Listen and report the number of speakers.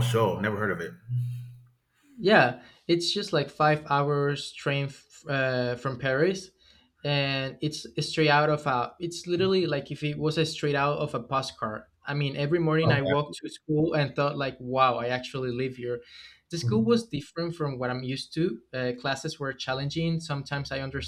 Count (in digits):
2